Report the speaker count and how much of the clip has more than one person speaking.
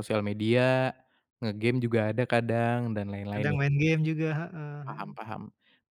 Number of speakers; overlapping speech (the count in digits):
2, about 9%